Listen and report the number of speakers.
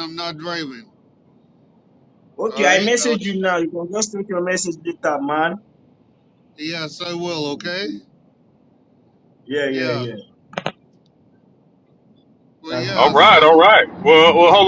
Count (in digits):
3